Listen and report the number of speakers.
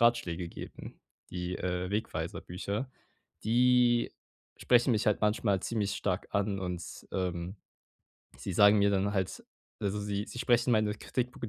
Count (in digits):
1